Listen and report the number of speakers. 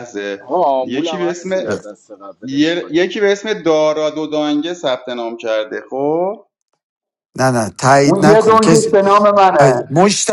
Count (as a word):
four